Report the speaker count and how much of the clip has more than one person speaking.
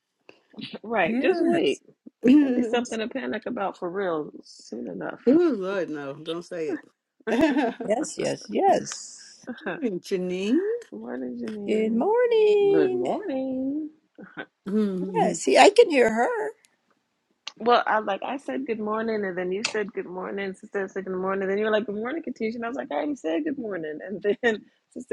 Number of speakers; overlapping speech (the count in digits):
4, about 6%